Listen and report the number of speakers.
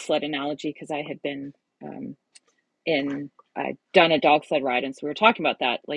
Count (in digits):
1